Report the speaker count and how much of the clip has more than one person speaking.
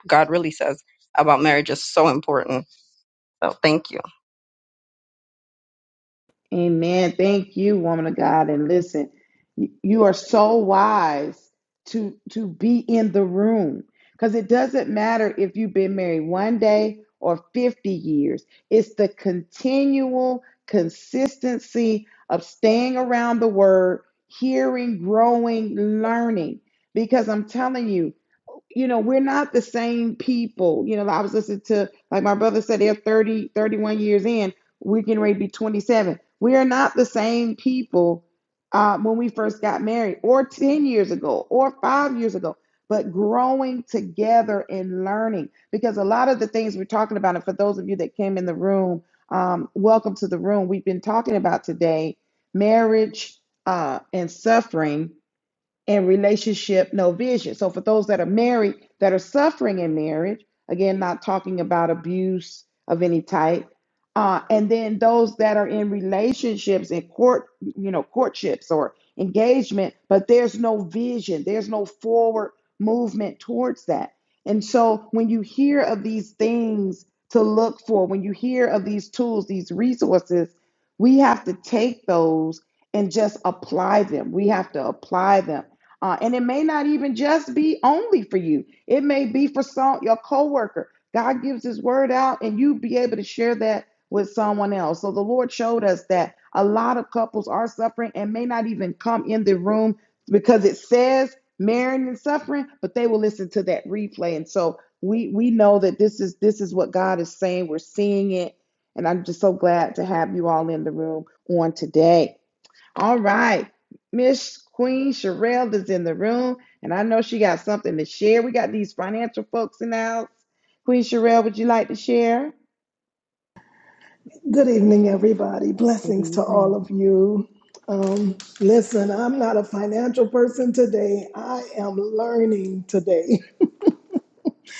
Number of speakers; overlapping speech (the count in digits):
3, about 1%